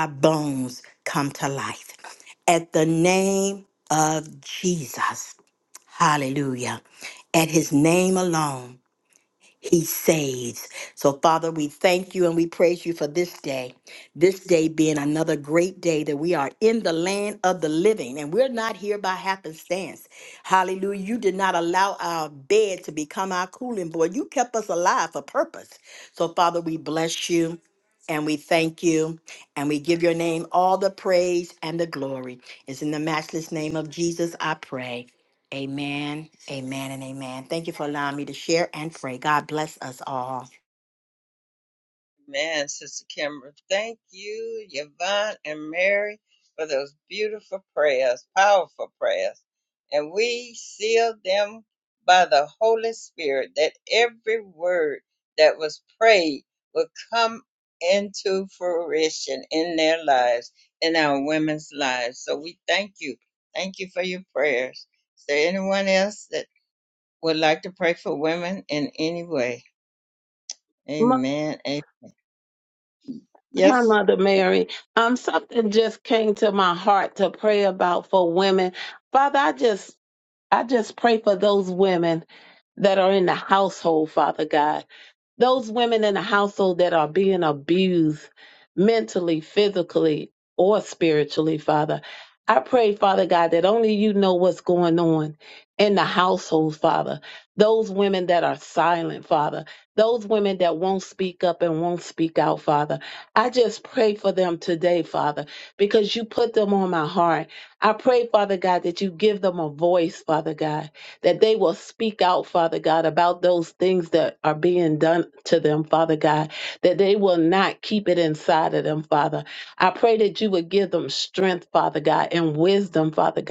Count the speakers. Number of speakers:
three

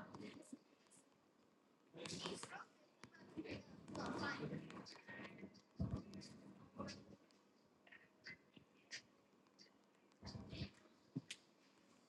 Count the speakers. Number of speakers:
zero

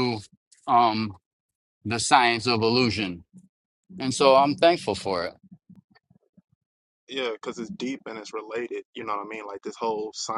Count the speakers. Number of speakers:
two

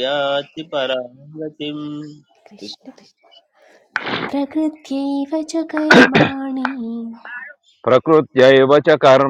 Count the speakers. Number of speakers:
three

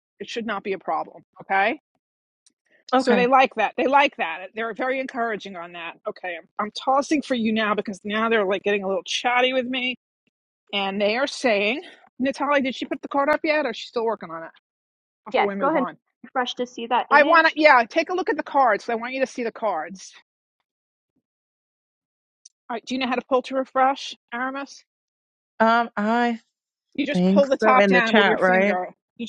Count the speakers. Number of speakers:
three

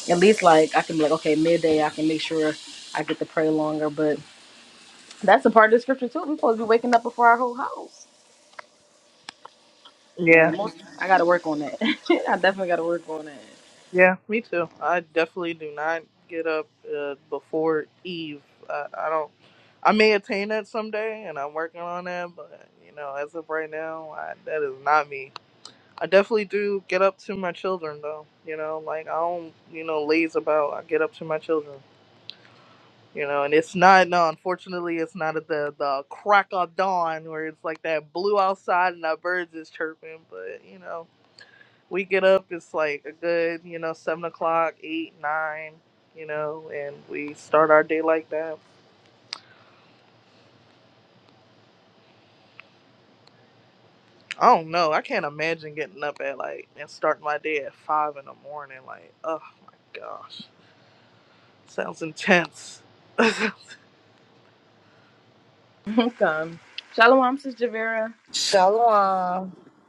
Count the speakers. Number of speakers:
three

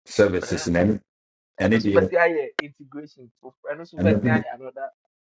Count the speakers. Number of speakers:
two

